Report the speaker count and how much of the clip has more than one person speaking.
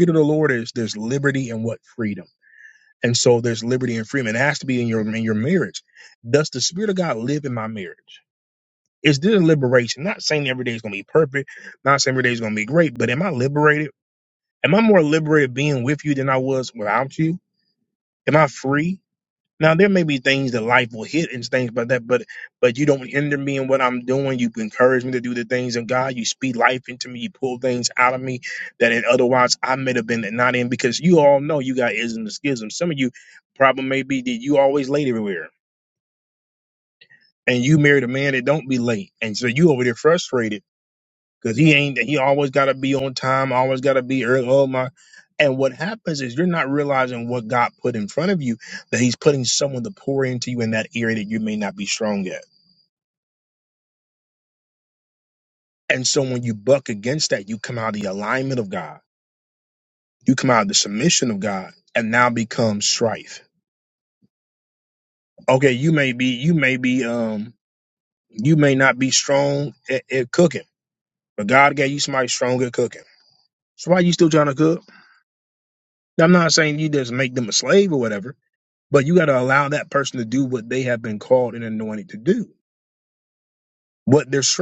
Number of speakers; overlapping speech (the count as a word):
one, no overlap